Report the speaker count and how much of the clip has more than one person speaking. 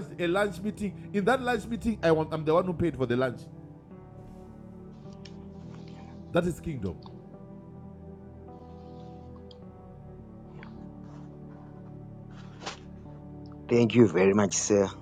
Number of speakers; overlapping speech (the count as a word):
two, no overlap